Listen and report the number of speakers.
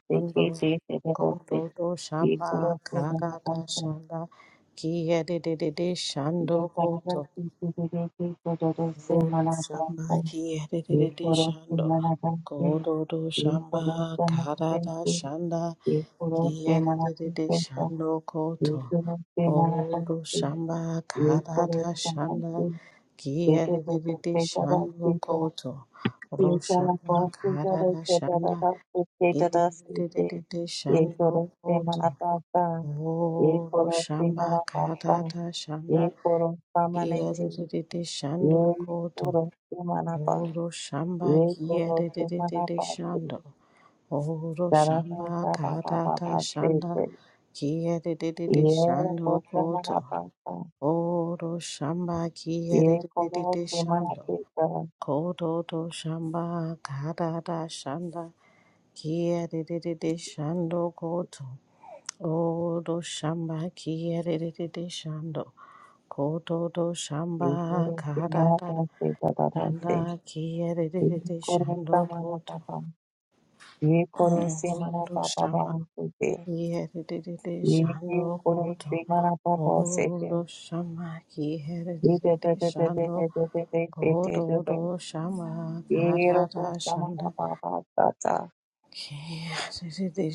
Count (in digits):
2